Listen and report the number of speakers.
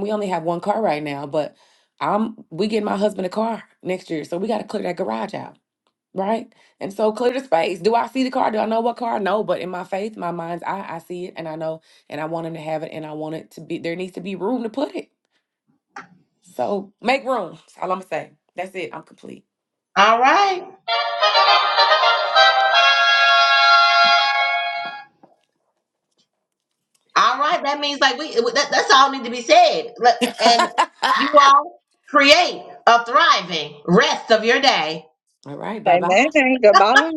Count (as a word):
three